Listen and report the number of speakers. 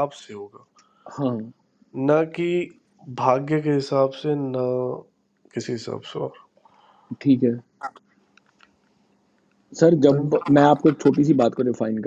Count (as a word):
two